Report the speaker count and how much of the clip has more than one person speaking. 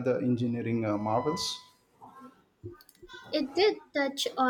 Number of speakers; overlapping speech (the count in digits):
2, no overlap